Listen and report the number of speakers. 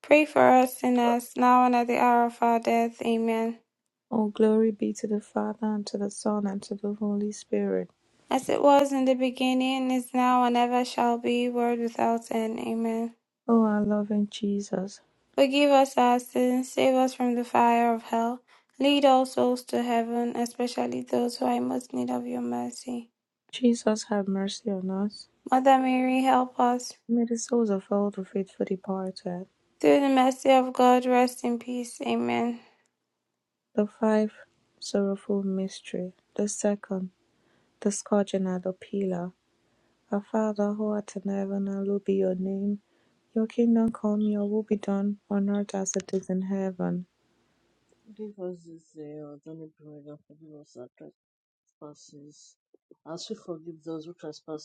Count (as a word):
three